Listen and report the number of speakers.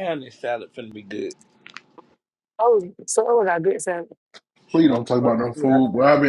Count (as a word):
three